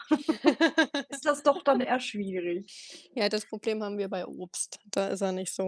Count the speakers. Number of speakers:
2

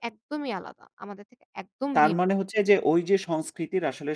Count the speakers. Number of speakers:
2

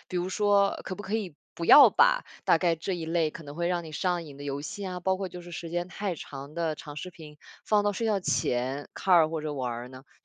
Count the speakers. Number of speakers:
1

